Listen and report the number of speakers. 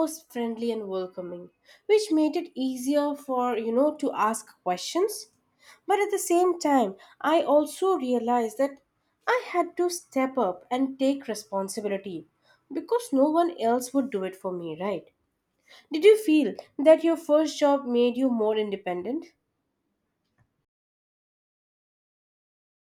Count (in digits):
1